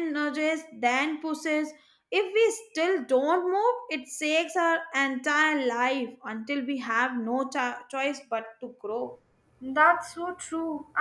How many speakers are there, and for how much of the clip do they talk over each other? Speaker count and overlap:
2, no overlap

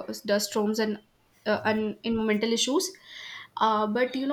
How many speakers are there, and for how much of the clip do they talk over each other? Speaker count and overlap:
1, no overlap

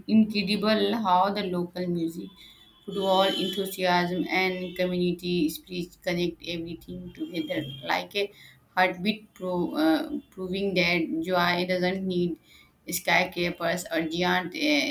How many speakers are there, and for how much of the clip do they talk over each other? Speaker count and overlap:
1, no overlap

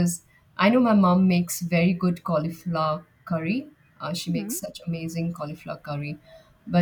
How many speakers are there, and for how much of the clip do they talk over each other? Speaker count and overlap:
1, no overlap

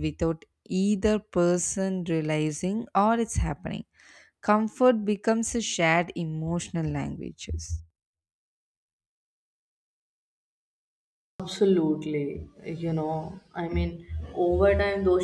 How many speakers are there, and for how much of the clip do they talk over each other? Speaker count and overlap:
2, no overlap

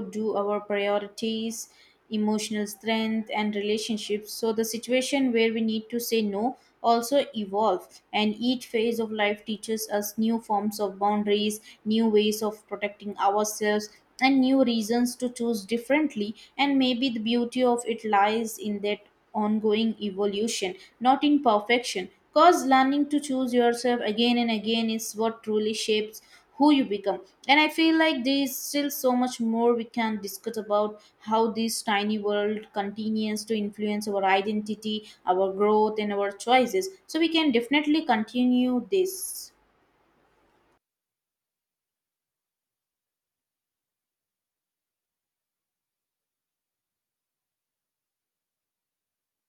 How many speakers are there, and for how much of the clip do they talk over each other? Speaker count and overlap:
1, no overlap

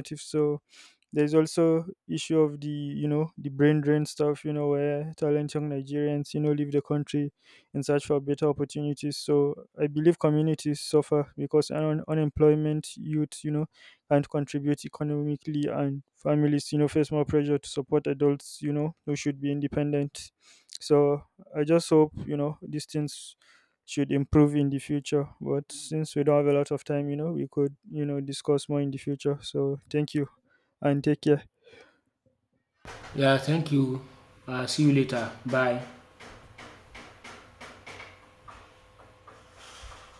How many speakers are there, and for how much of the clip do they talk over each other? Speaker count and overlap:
2, no overlap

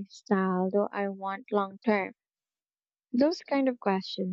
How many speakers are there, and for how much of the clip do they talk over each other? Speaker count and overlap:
1, no overlap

